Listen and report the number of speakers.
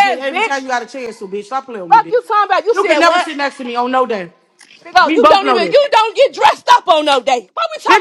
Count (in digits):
2